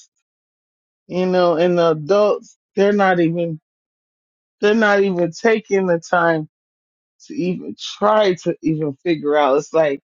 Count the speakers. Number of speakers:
one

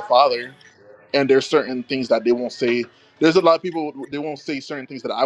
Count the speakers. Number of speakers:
one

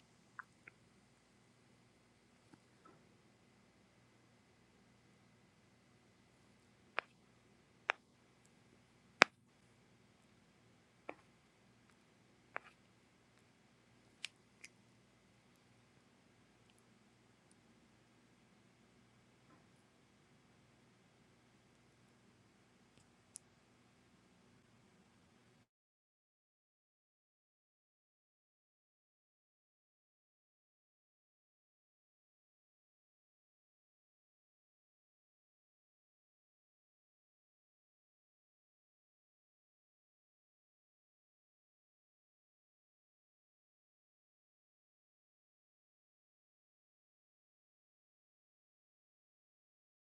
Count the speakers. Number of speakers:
zero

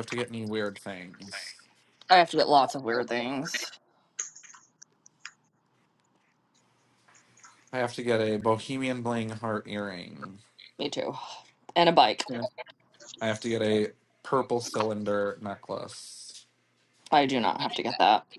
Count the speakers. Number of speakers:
two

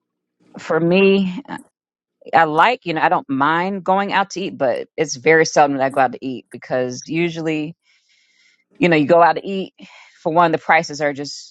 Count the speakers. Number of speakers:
one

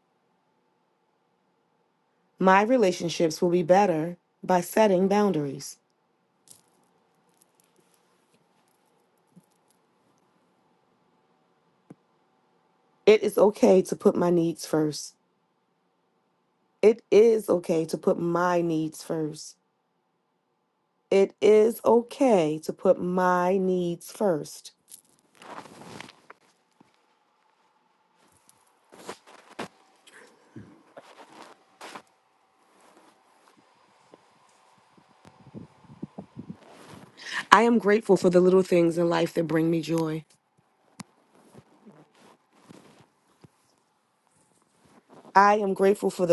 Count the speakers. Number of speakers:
one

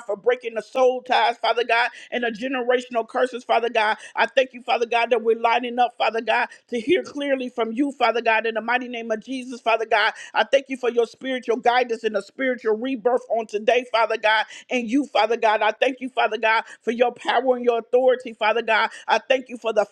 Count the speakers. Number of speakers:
one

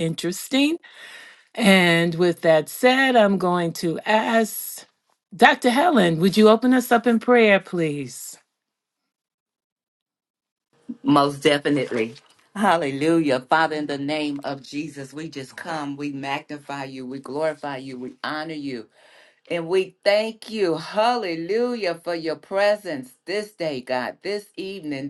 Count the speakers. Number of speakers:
two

